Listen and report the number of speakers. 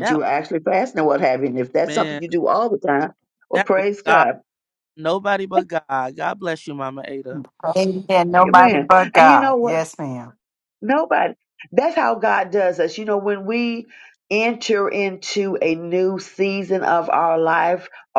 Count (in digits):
3